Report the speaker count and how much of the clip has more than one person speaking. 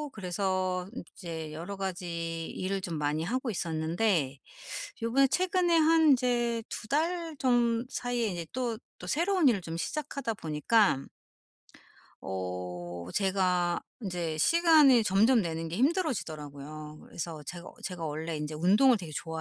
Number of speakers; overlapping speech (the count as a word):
one, no overlap